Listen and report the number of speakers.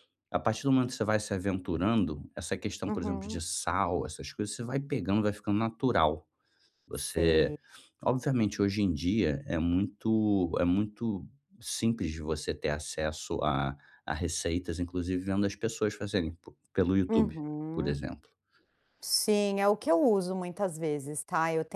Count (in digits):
2